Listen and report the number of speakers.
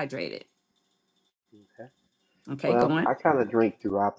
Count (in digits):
2